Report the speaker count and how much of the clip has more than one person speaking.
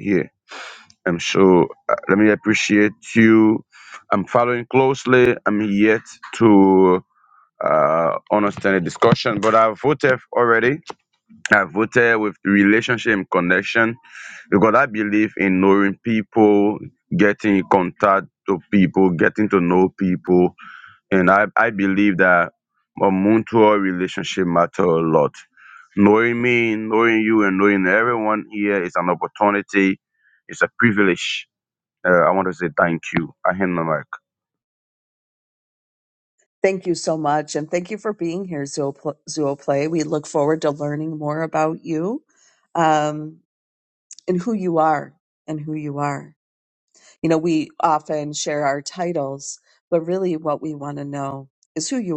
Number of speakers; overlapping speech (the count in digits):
2, no overlap